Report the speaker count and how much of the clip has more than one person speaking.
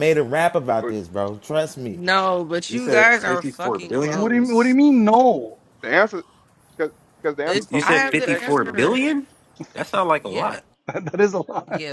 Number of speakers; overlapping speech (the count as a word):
five, about 32%